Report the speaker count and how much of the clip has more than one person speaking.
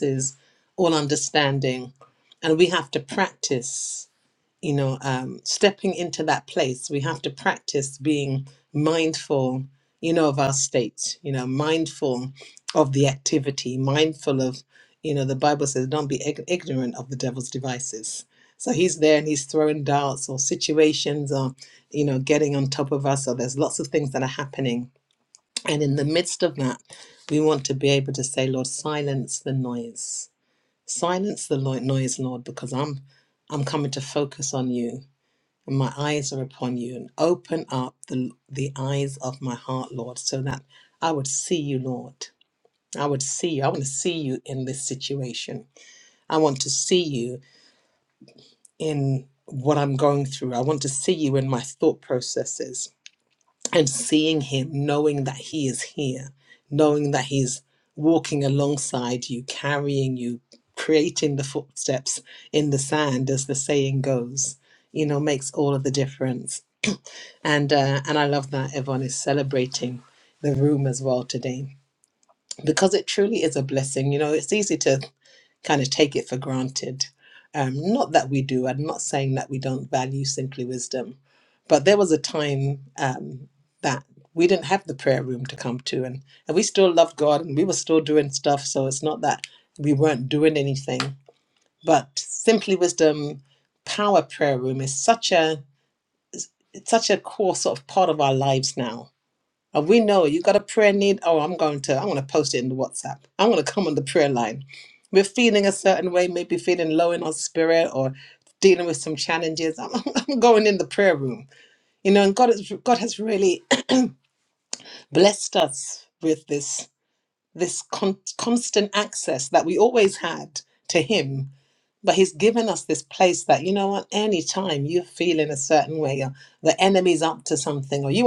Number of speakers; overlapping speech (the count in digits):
1, no overlap